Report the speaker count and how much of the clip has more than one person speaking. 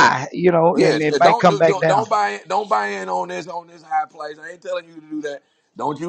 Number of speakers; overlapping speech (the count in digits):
2, about 21%